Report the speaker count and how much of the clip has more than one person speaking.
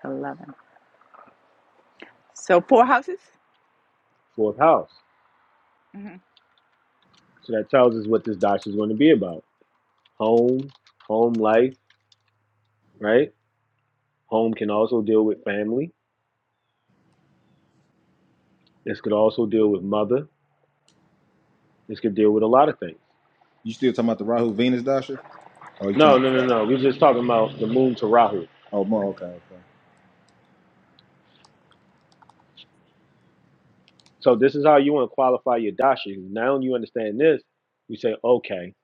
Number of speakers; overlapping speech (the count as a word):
three, about 2%